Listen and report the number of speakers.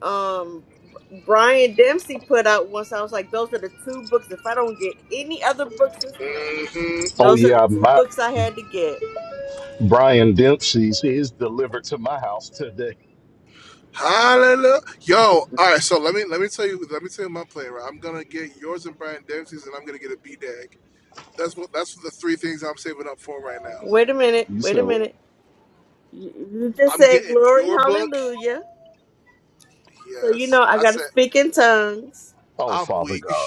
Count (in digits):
3